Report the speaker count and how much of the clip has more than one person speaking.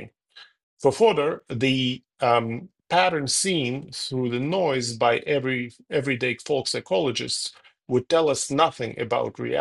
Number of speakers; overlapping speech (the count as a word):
one, no overlap